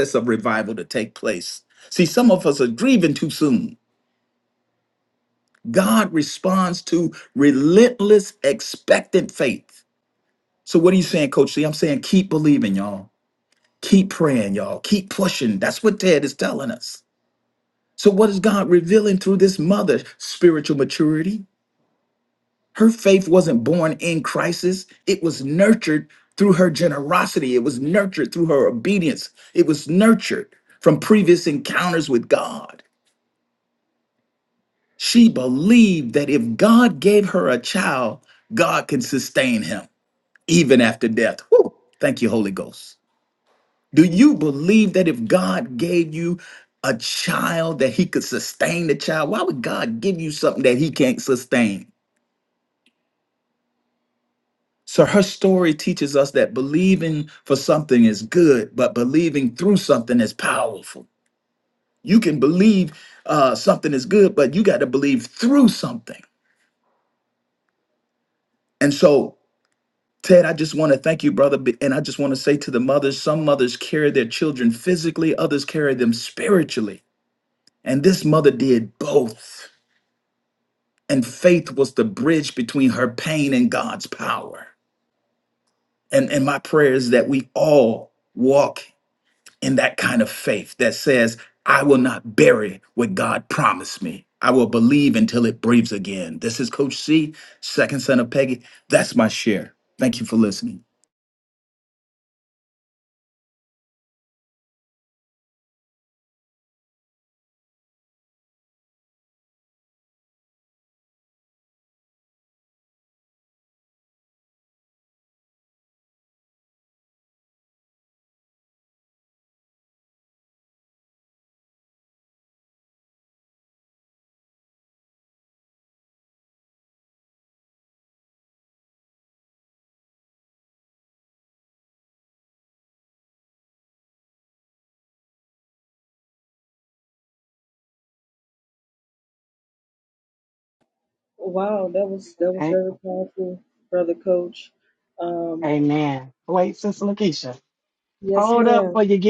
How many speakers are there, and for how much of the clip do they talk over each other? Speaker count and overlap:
3, about 1%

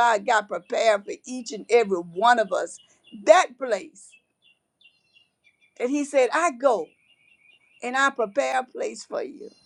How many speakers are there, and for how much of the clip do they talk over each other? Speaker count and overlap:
1, no overlap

